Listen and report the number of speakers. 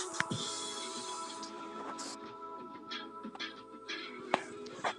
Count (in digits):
0